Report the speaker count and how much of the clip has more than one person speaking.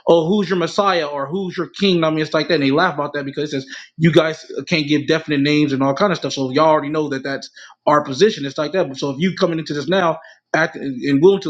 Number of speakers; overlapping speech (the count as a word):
one, no overlap